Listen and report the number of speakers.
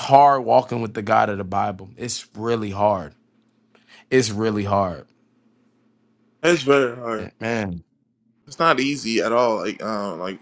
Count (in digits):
2